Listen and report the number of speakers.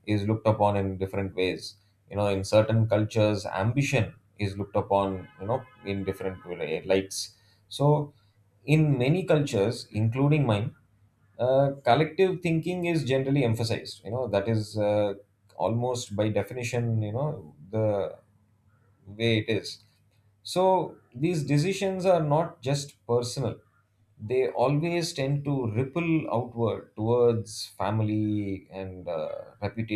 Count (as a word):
one